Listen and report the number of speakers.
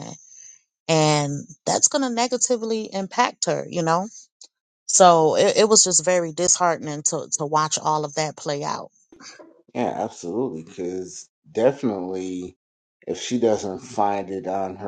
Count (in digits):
2